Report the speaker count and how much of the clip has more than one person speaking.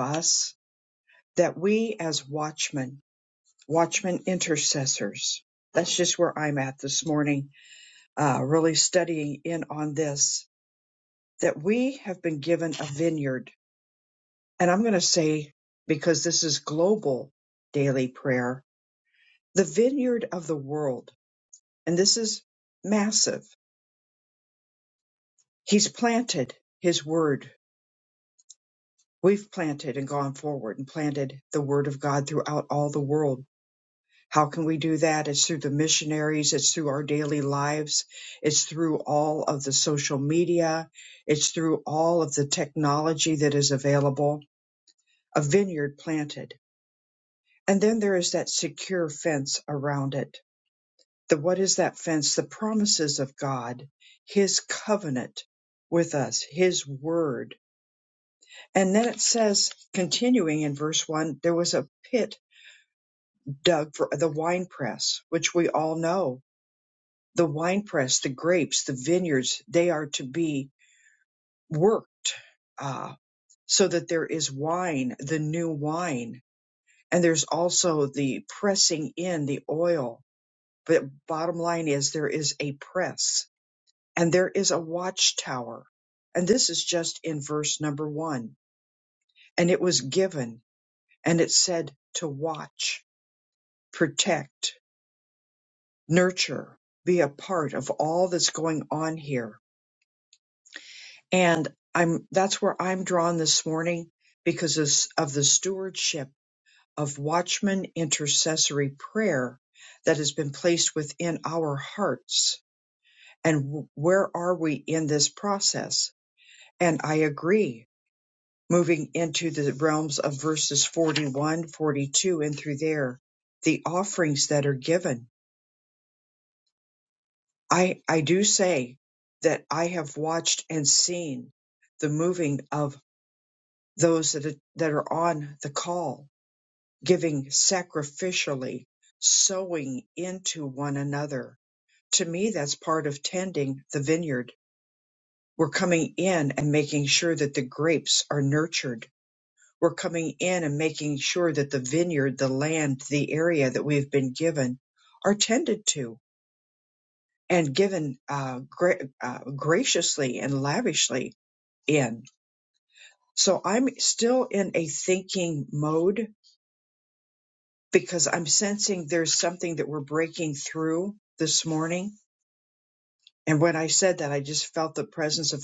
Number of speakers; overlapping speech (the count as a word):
one, no overlap